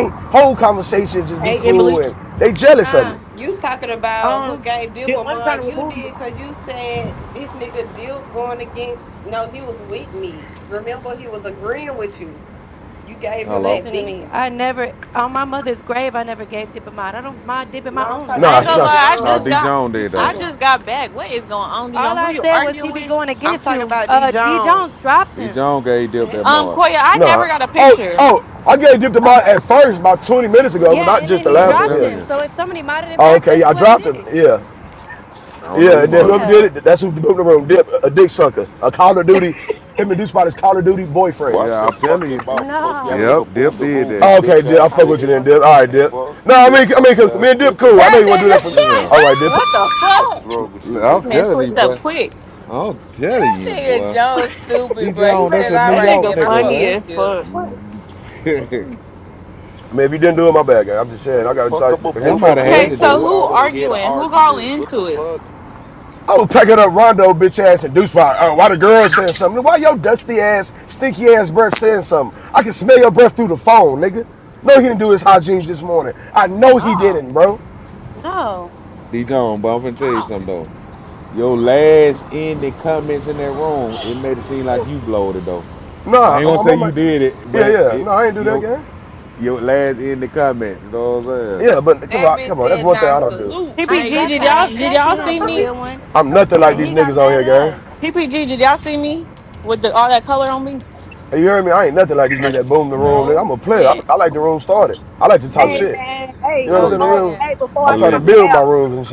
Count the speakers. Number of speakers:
8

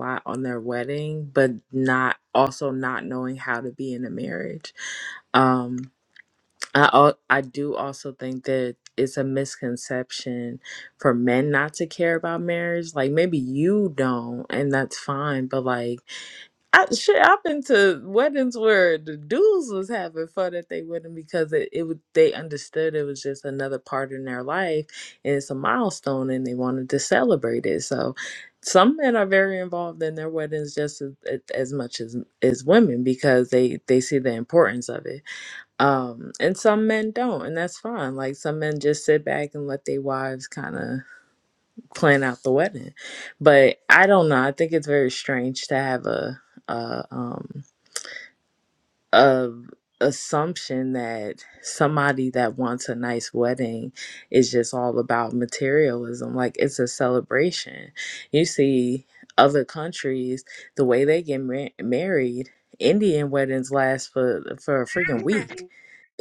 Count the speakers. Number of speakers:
1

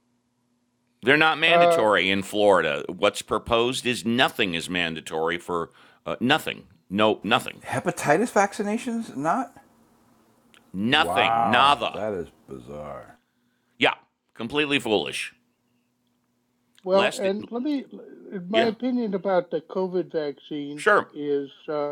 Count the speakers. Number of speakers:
3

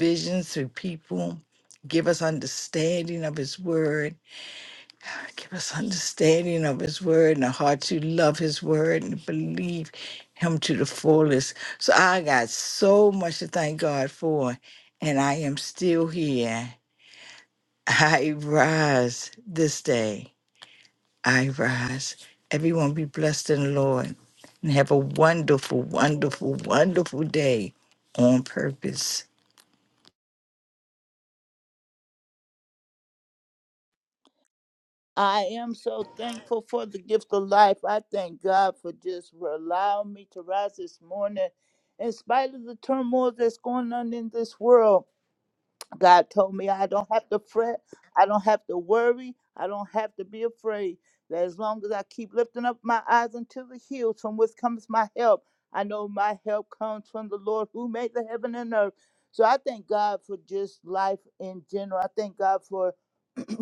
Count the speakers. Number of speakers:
2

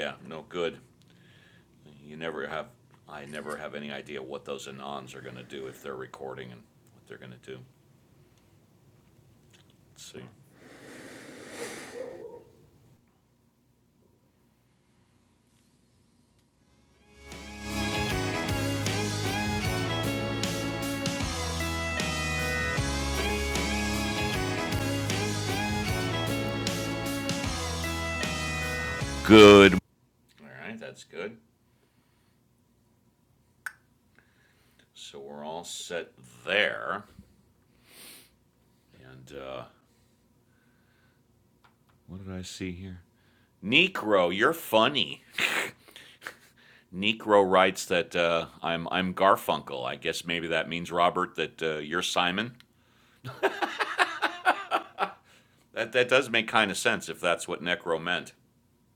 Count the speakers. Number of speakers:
1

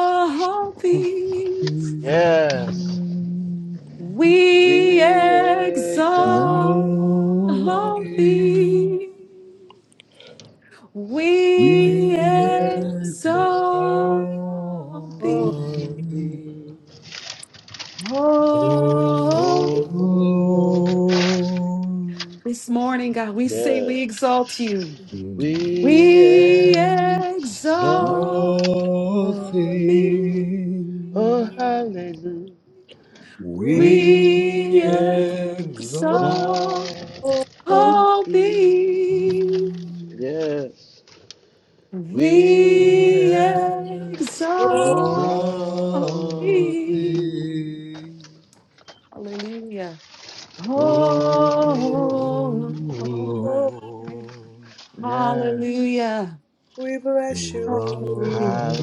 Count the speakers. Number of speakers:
4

